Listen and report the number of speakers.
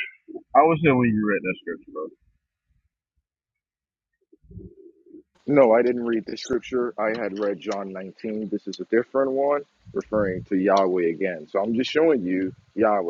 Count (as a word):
two